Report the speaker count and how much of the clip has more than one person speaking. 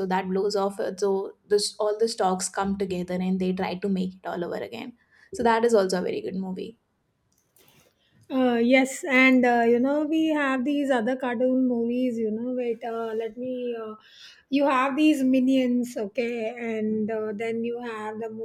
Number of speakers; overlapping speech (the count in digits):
2, no overlap